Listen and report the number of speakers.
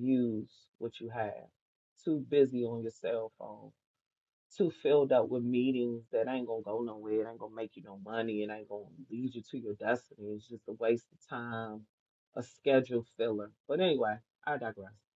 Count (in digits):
1